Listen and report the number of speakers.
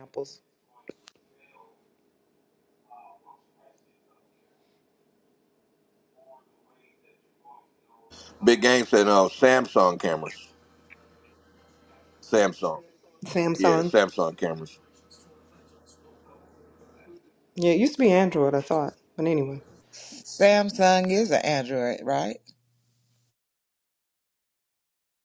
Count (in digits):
3